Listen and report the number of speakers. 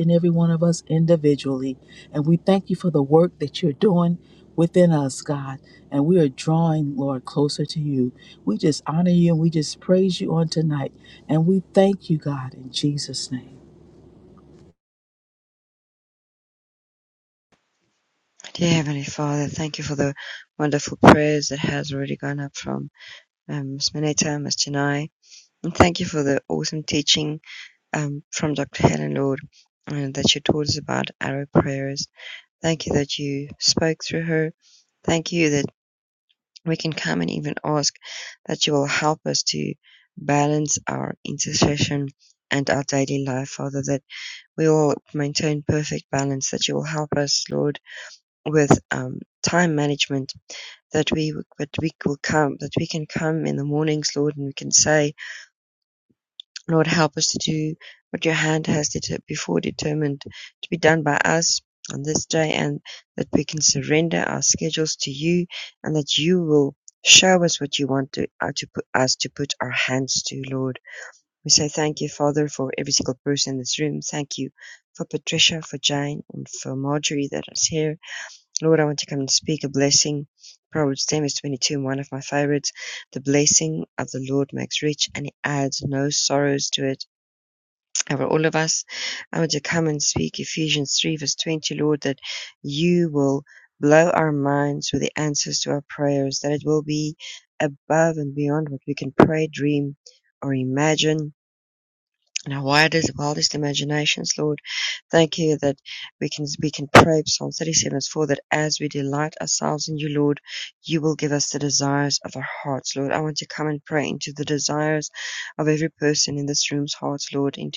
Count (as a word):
two